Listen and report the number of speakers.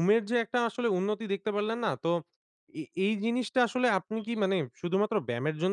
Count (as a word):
one